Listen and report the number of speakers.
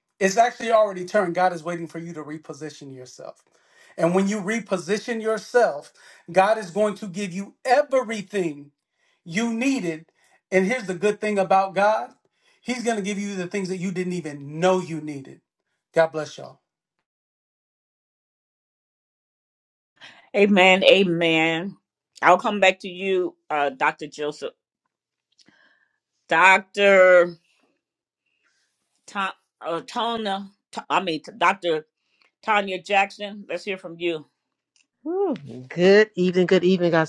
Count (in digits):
3